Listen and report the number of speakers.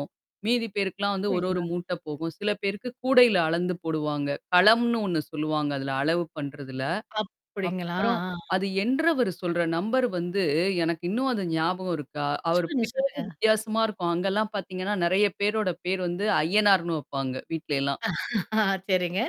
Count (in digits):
2